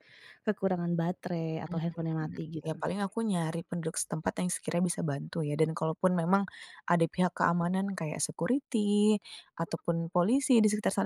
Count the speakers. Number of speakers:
two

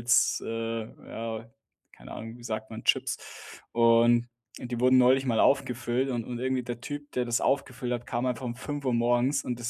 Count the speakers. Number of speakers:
one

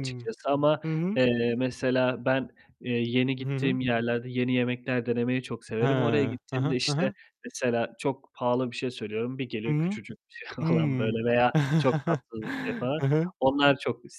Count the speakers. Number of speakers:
two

